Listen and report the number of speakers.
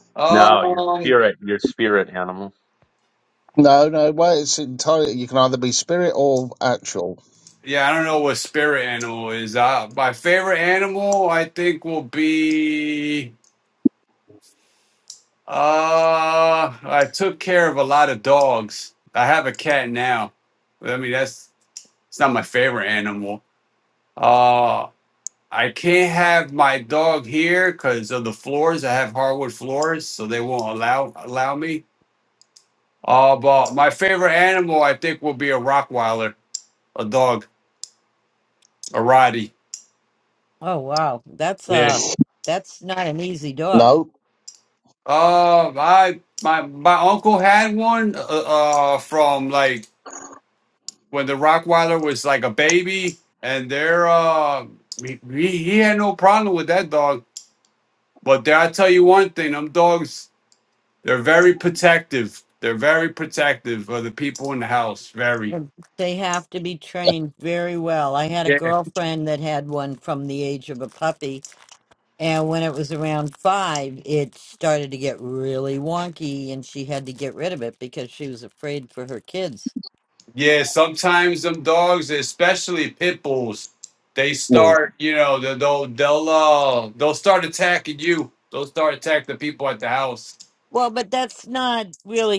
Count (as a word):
four